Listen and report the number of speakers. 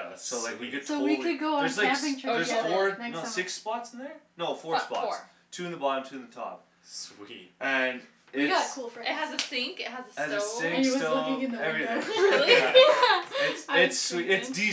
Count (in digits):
4